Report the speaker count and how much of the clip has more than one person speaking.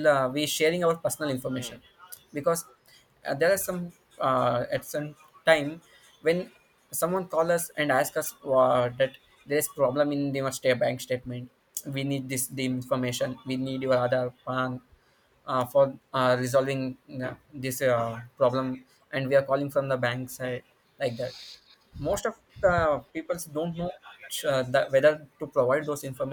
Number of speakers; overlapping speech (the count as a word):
one, no overlap